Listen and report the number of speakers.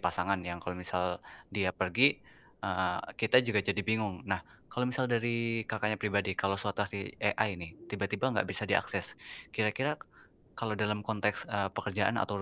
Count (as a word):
one